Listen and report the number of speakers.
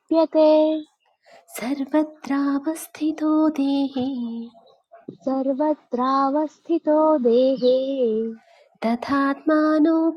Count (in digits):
2